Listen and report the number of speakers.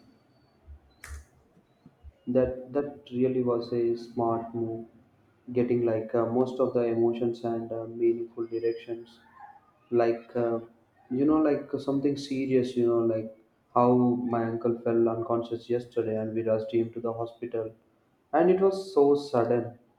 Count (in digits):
1